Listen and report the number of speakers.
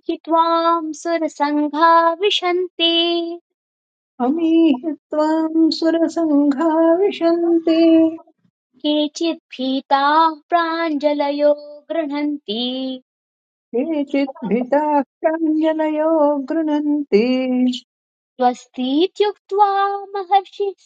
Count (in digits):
2